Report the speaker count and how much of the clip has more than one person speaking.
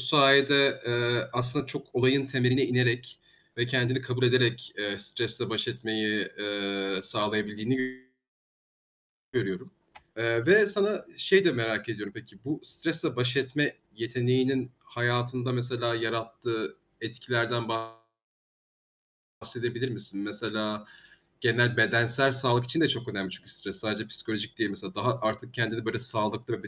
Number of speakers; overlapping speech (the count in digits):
1, no overlap